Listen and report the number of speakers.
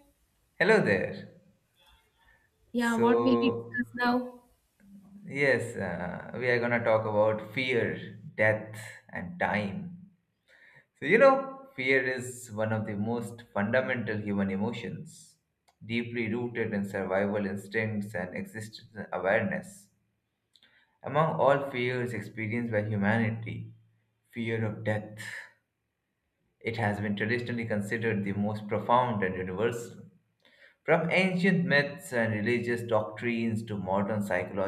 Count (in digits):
2